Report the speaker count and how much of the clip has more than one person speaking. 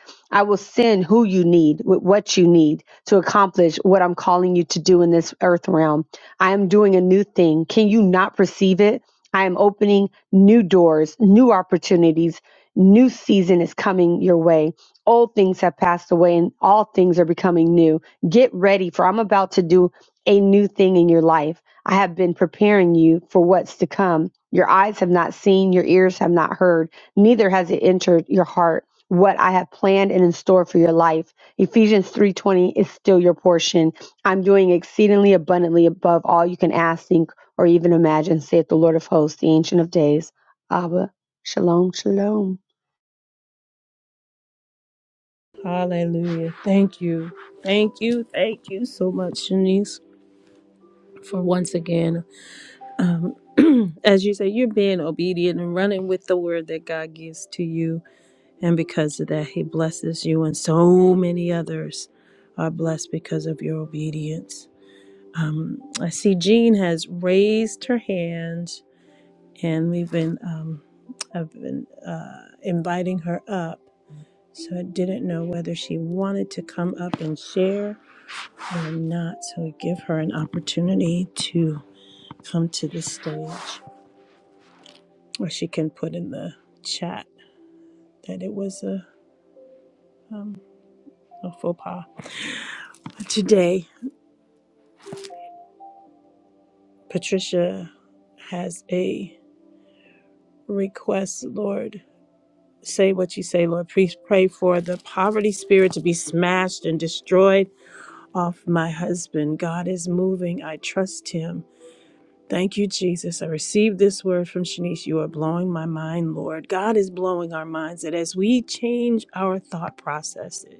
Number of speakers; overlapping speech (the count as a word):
two, no overlap